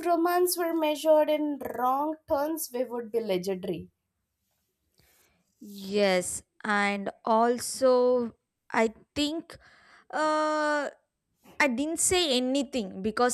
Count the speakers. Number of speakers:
two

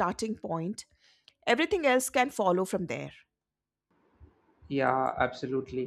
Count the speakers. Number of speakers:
two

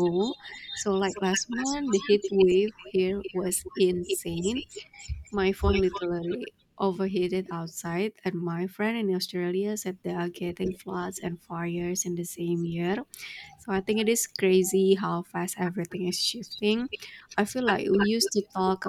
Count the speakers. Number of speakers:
one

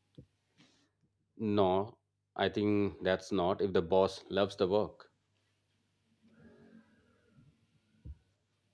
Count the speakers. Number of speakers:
one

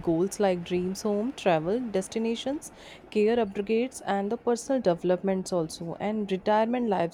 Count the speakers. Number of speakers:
one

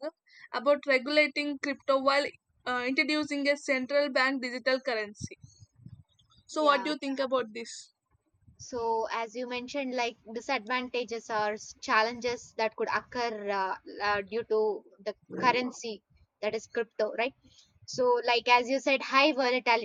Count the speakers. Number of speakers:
two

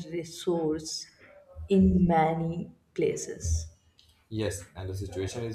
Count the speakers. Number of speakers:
two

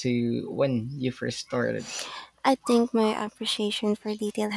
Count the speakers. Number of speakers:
two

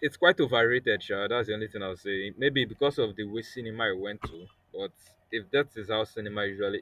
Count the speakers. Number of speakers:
one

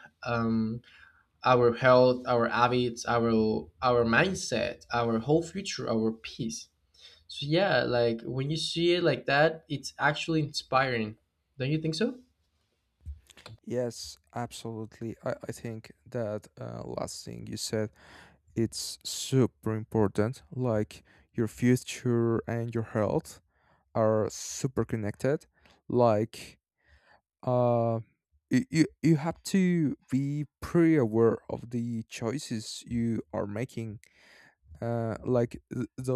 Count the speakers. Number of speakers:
two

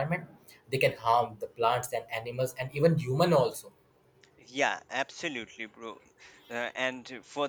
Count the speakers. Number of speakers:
two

